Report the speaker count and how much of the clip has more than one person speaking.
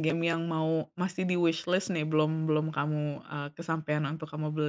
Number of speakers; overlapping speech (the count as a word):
one, no overlap